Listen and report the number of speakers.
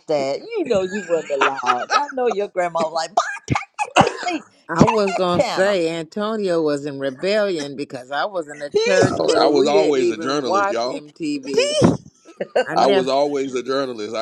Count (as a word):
three